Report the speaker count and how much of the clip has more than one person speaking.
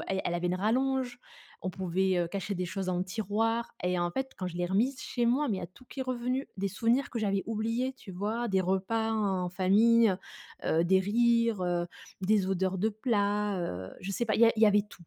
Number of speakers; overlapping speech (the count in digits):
1, no overlap